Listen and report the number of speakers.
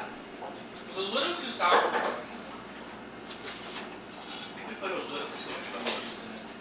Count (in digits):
1